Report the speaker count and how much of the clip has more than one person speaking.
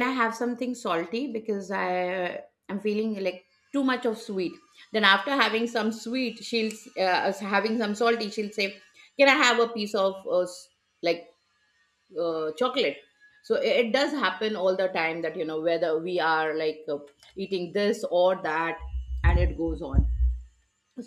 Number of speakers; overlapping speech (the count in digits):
1, no overlap